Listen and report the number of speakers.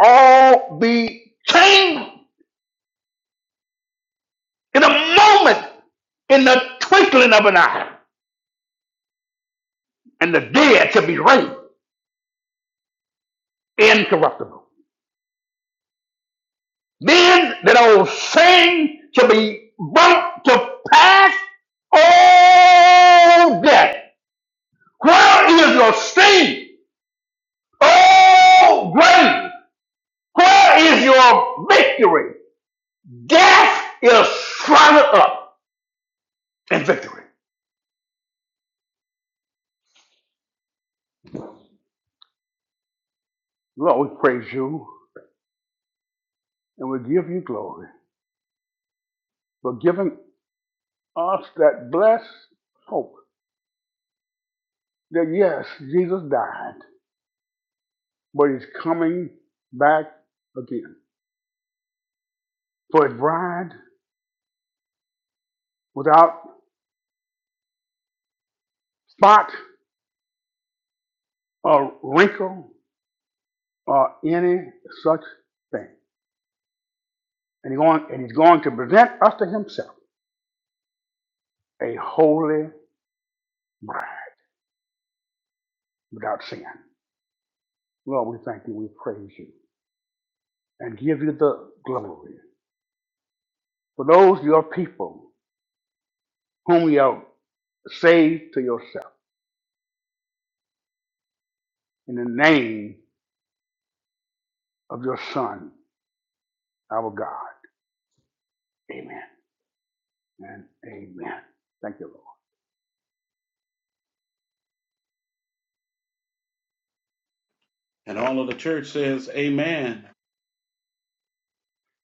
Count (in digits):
2